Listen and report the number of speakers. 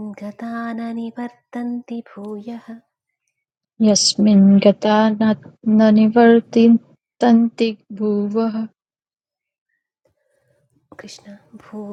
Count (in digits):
2